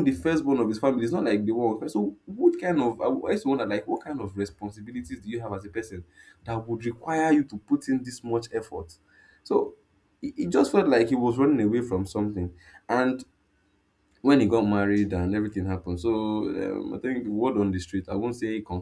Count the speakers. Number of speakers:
one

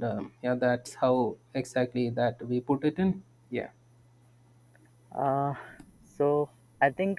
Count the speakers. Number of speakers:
two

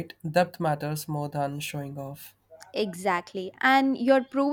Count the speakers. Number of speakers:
two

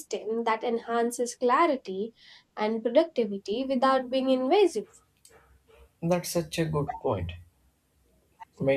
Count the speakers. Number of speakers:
two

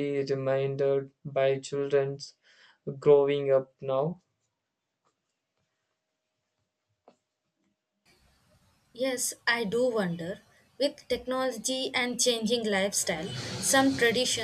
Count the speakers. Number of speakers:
two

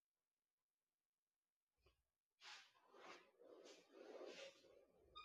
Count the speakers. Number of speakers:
zero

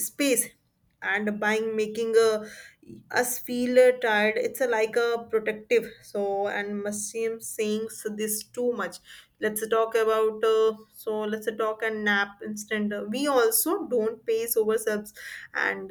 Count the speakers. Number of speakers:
one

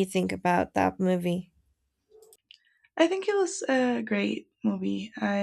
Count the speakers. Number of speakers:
two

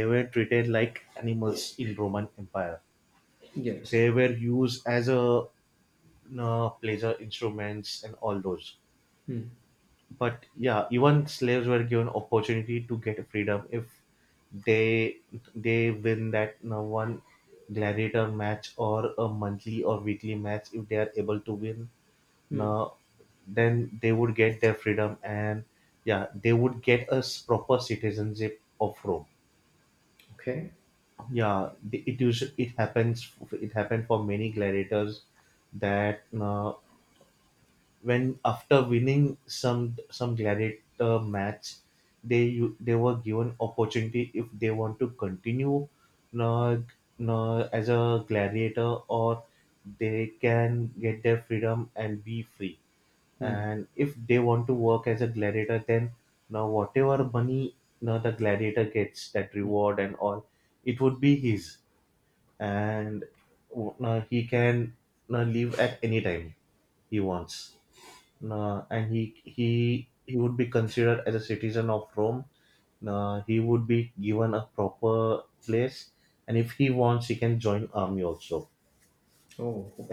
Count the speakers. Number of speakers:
two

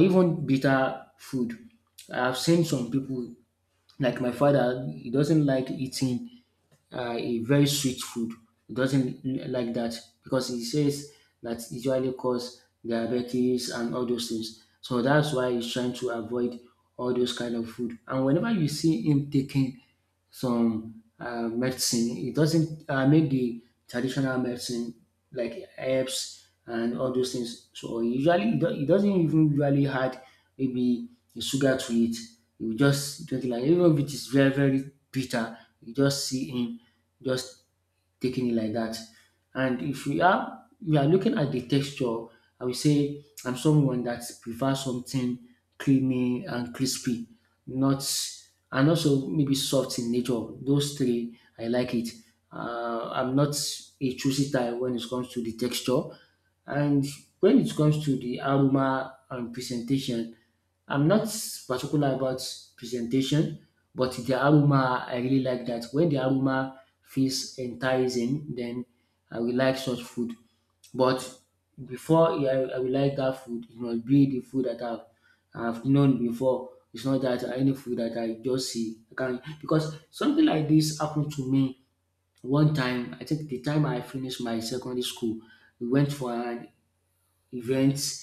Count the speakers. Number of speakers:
one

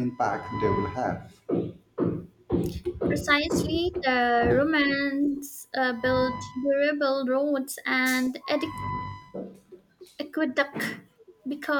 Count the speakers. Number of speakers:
two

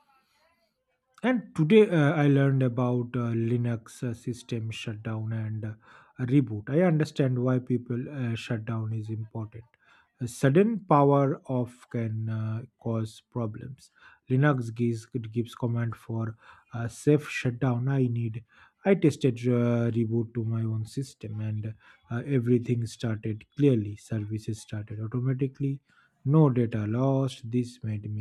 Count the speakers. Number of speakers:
one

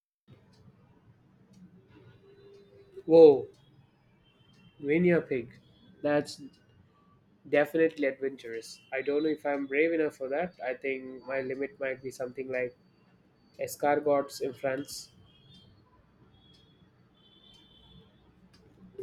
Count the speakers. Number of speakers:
one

